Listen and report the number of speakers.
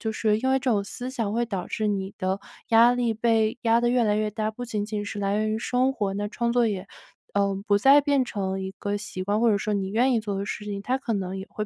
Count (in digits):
1